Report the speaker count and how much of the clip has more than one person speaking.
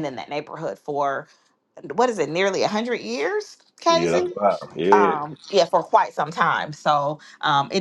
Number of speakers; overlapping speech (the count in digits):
2, about 9%